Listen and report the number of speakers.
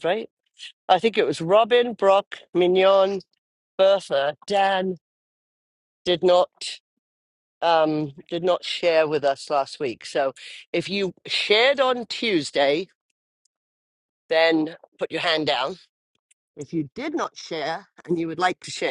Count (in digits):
1